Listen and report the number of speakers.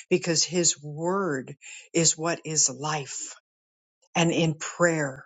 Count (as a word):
one